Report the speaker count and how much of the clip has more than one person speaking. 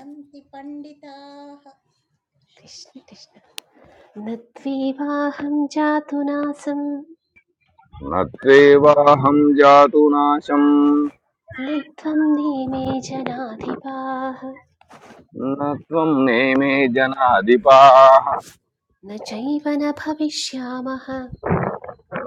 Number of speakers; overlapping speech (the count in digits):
3, no overlap